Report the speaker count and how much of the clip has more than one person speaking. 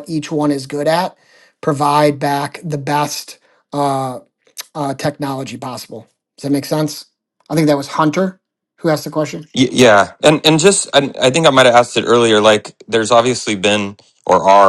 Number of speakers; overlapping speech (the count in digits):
2, no overlap